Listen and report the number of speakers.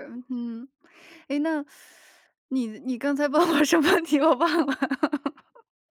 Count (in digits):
1